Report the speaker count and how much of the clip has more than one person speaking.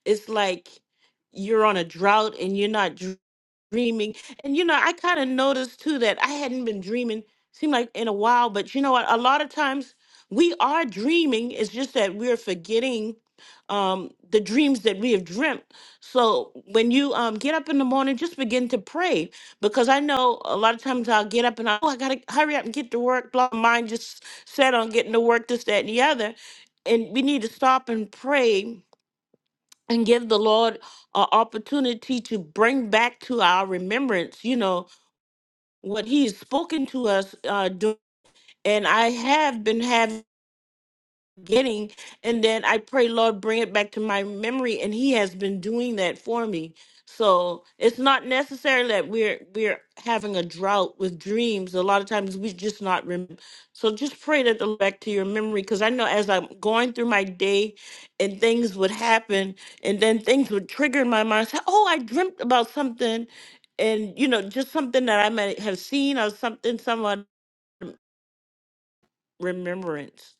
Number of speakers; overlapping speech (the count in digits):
1, no overlap